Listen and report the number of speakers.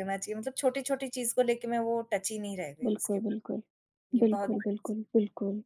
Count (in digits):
2